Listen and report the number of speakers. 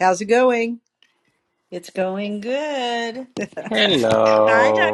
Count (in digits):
3